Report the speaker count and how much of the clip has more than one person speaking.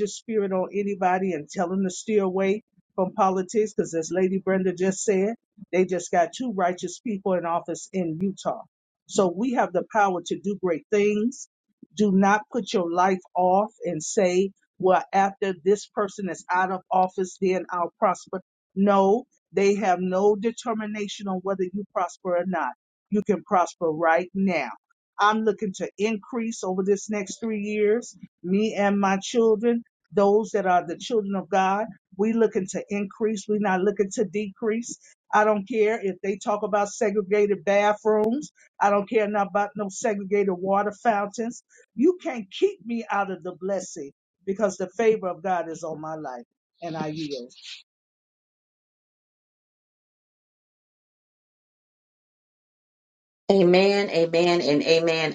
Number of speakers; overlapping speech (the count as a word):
two, no overlap